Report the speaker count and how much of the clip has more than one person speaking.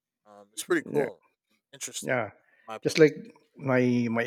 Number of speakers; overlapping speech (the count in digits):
2, about 9%